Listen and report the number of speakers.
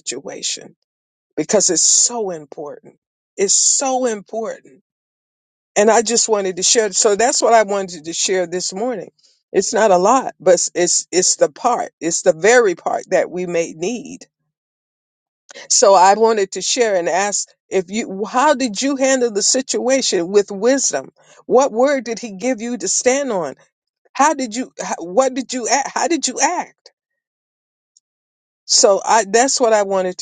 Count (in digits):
1